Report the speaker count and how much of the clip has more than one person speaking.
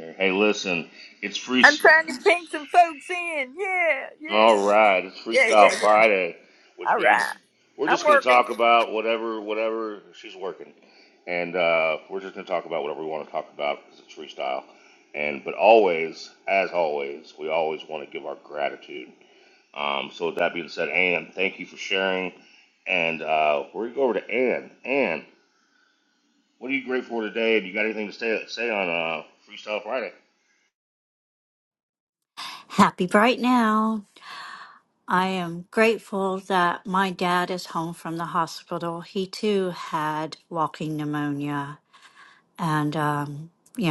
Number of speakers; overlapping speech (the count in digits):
3, about 6%